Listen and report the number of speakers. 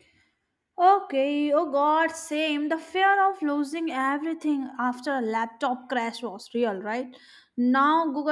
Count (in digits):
1